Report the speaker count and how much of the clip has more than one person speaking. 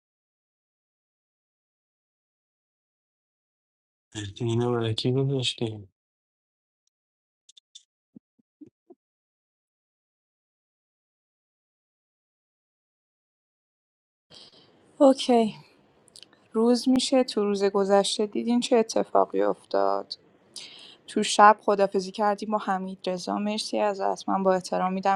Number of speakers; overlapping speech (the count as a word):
two, no overlap